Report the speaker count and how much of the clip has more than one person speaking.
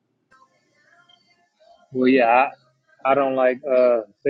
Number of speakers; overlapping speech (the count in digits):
1, no overlap